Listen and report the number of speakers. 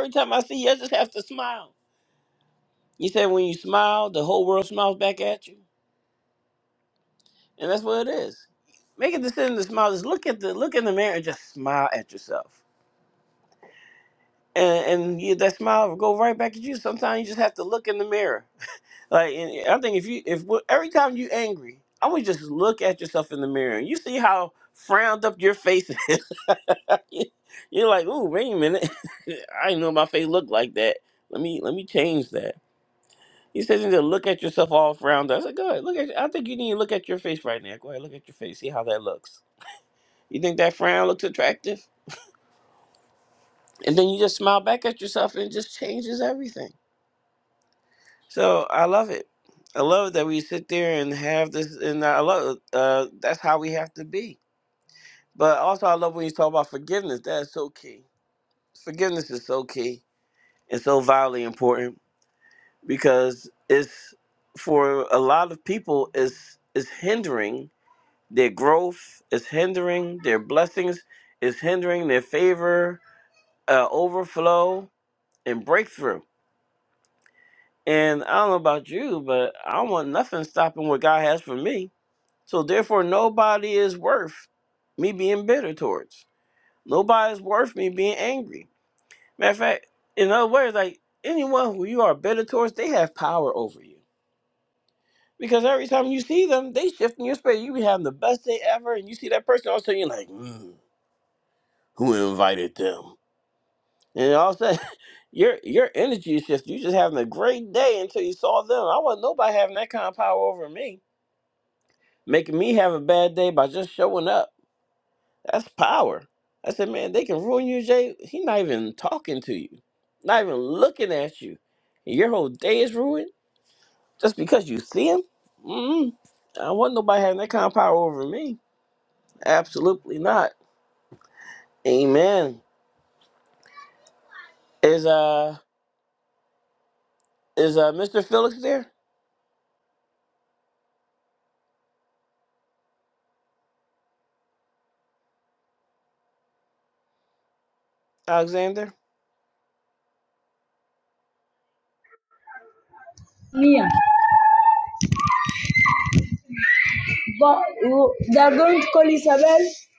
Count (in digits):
2